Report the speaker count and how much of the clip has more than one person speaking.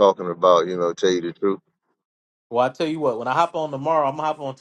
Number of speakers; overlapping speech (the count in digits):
2, no overlap